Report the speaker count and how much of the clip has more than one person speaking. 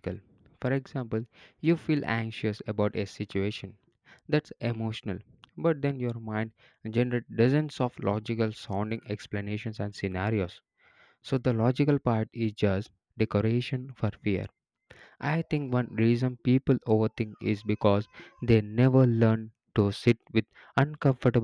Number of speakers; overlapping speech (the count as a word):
one, no overlap